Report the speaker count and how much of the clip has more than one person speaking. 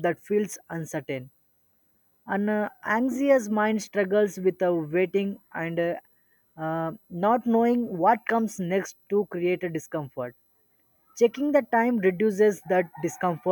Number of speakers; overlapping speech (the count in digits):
1, no overlap